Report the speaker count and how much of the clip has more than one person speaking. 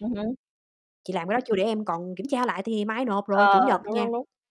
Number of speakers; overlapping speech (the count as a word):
two, about 17%